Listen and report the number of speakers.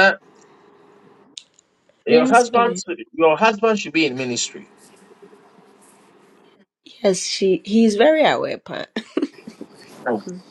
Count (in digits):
2